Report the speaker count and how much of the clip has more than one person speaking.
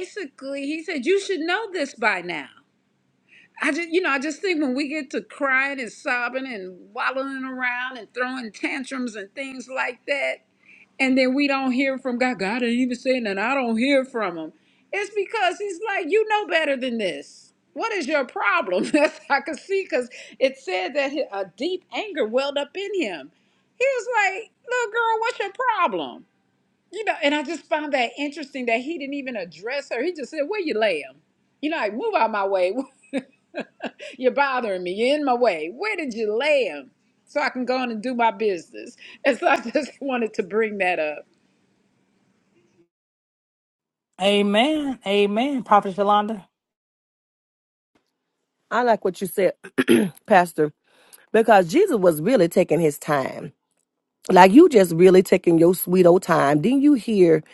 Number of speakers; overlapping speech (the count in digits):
3, no overlap